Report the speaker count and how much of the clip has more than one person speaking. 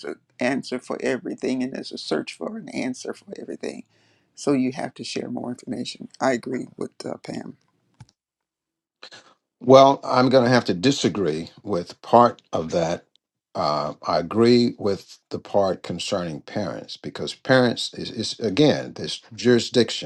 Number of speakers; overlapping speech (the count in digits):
2, no overlap